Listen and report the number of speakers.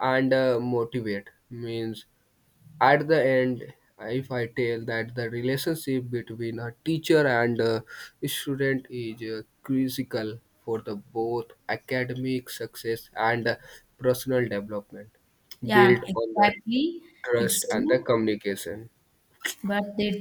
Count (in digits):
2